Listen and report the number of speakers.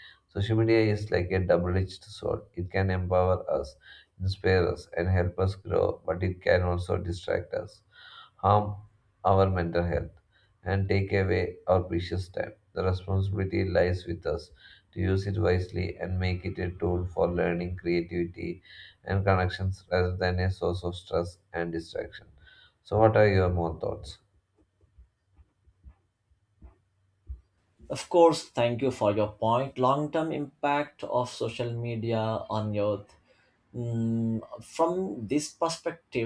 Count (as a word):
two